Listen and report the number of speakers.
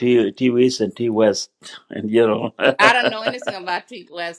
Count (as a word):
two